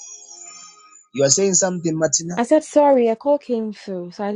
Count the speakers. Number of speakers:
two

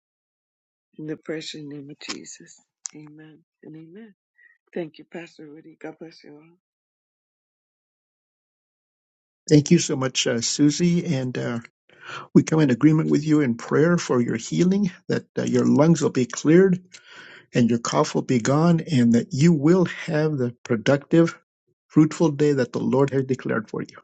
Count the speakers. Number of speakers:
two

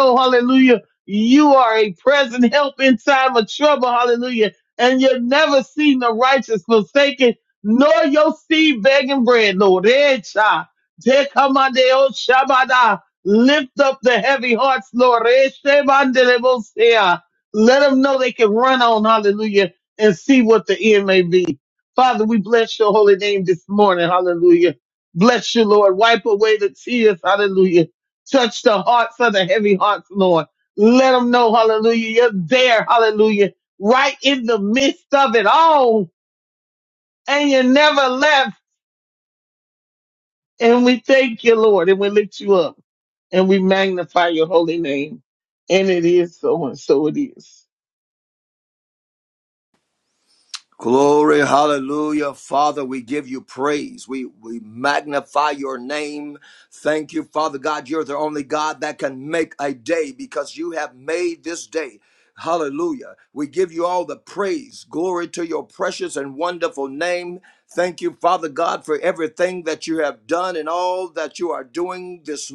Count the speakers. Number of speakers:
two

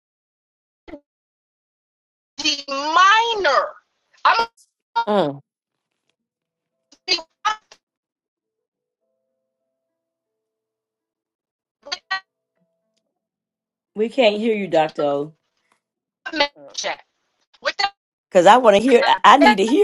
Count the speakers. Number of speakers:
two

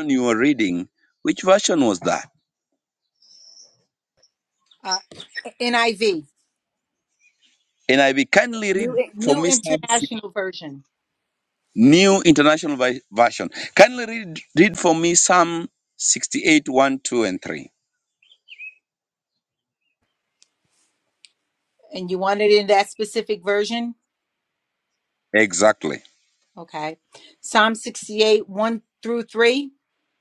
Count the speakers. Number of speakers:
two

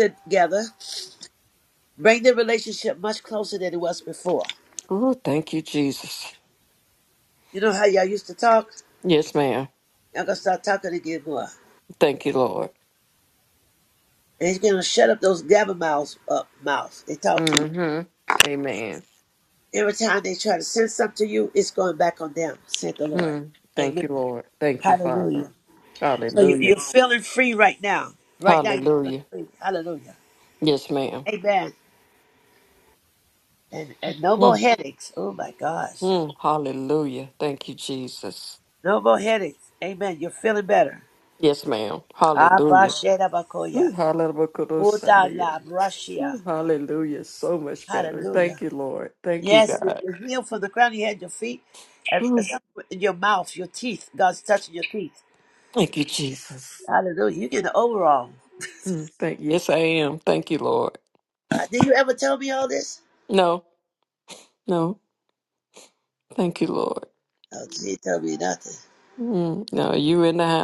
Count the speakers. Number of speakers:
two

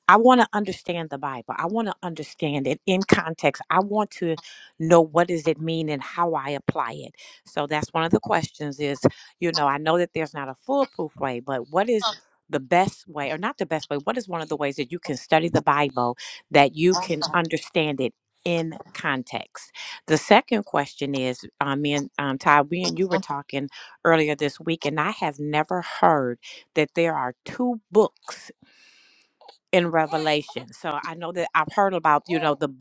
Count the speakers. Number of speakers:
one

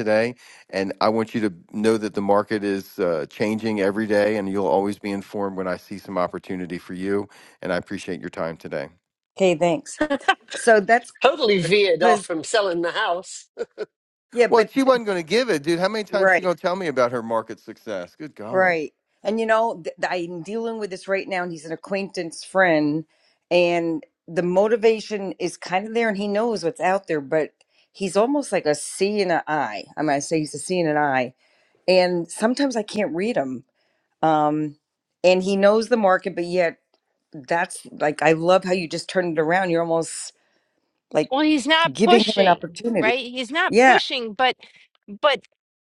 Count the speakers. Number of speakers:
four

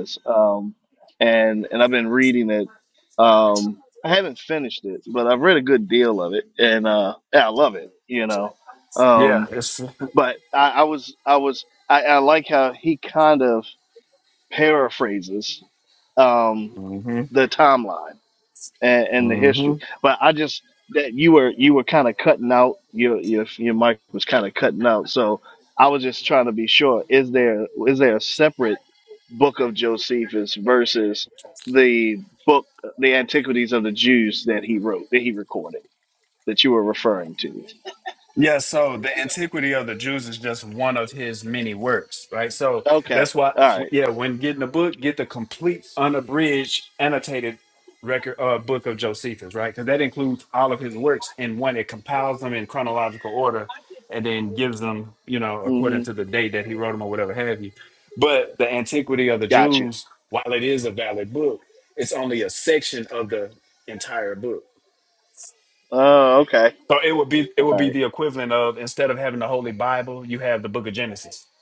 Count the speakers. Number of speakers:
two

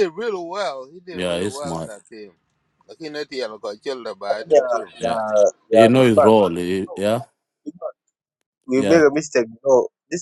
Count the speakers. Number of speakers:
three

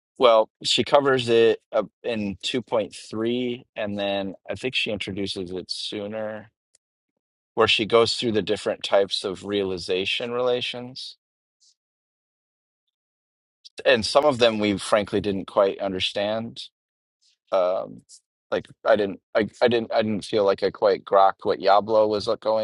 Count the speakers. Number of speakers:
one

